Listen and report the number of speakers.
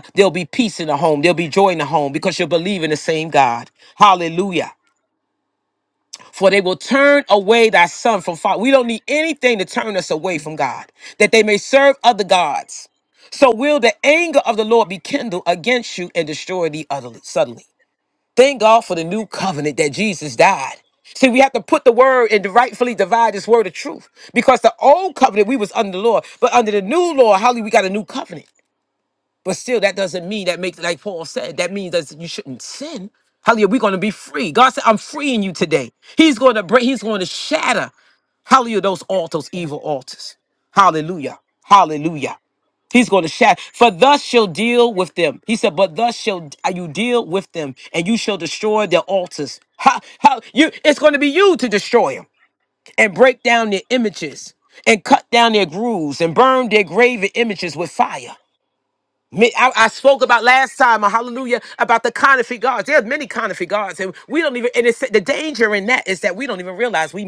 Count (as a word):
one